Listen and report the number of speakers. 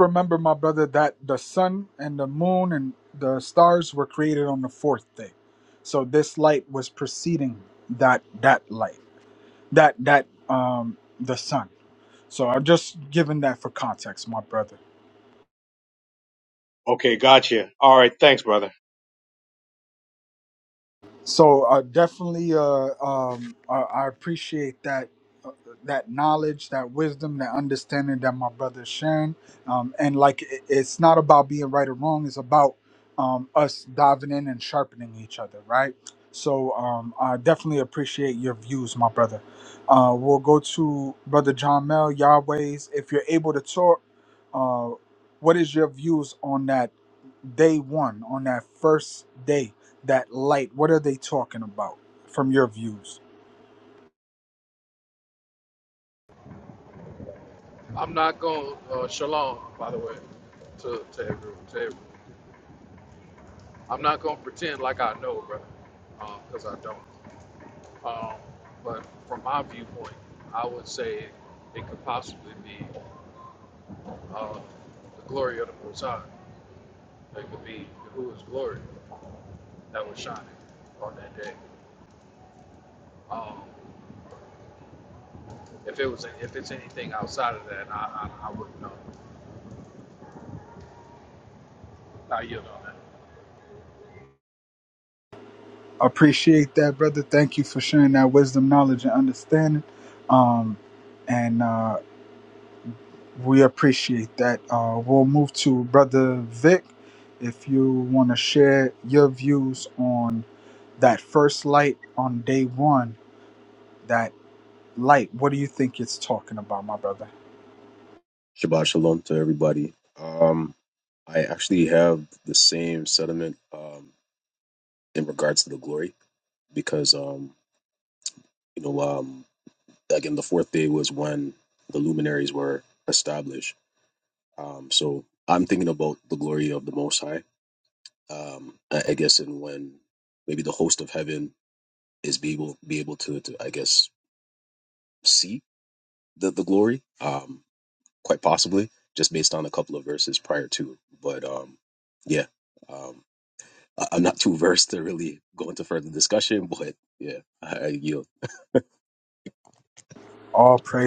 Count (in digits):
4